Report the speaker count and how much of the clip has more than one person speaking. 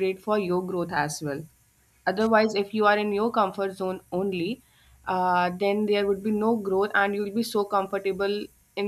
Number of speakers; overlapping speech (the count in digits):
1, no overlap